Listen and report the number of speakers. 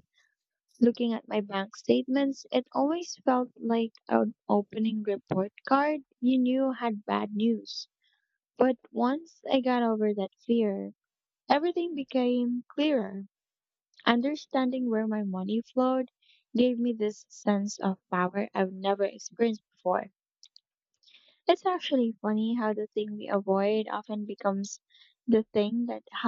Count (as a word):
one